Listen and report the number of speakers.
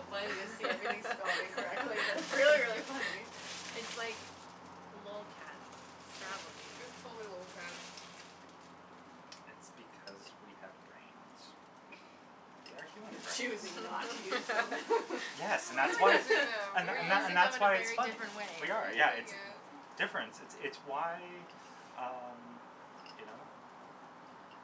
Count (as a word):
four